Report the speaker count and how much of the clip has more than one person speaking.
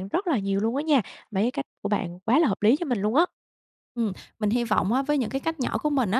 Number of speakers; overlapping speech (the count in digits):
2, no overlap